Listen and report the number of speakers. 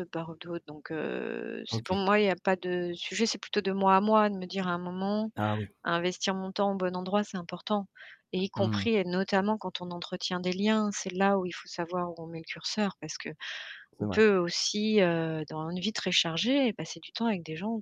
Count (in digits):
2